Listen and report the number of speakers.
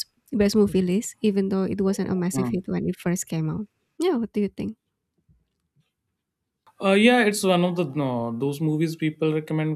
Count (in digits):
2